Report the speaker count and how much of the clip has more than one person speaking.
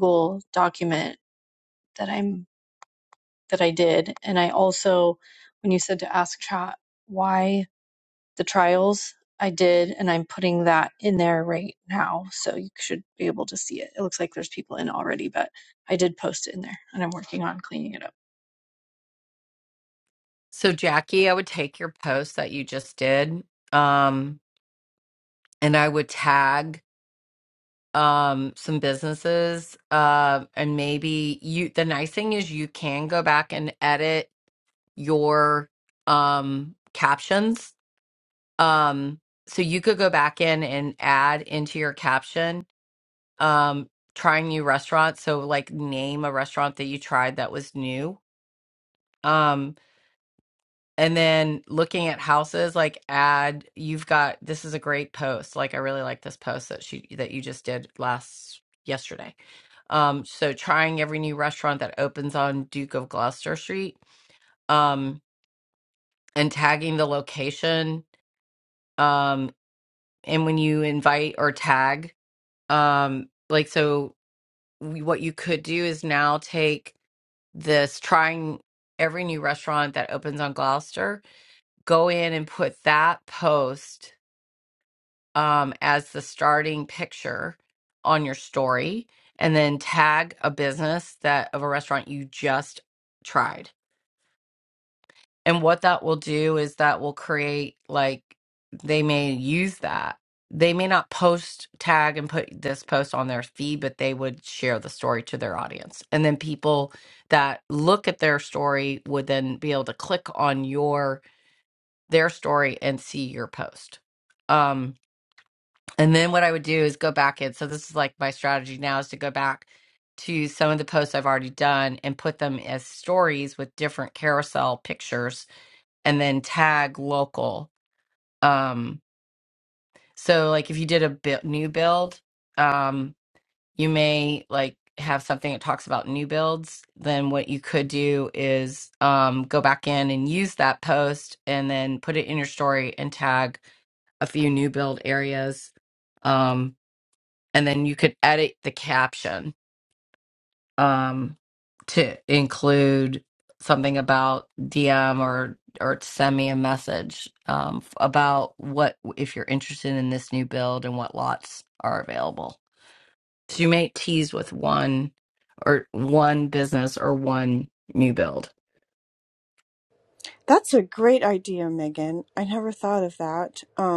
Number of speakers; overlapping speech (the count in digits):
3, no overlap